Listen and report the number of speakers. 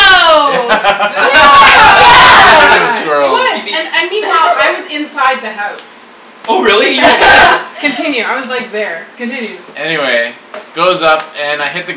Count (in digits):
4